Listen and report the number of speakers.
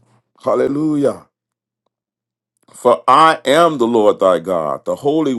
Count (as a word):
one